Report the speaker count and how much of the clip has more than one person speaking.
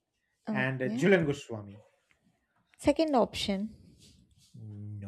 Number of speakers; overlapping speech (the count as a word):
two, about 11%